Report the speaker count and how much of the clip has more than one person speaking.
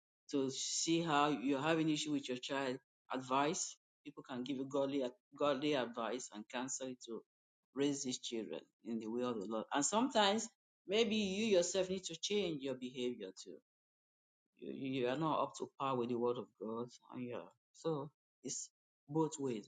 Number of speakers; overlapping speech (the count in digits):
1, no overlap